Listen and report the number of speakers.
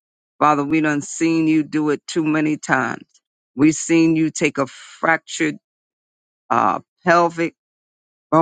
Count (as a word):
one